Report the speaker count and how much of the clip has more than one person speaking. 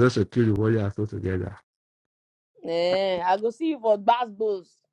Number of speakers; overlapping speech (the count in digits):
2, no overlap